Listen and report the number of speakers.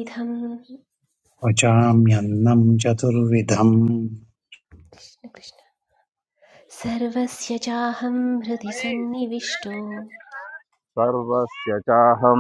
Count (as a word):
three